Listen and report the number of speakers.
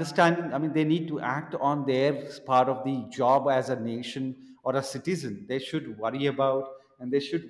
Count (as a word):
one